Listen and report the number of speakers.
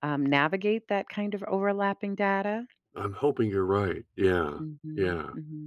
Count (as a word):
two